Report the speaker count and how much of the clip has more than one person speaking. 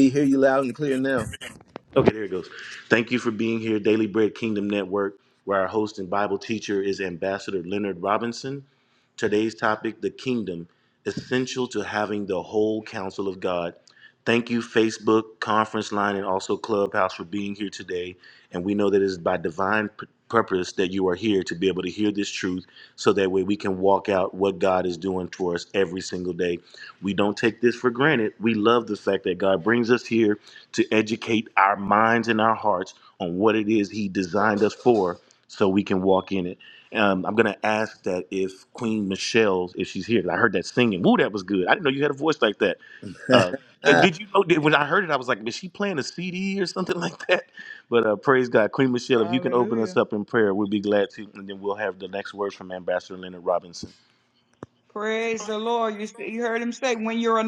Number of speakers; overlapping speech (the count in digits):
3, about 1%